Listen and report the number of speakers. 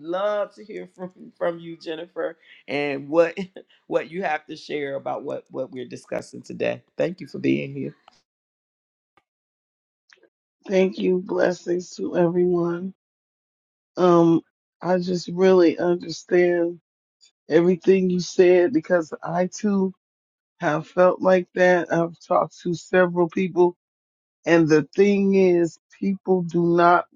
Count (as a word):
two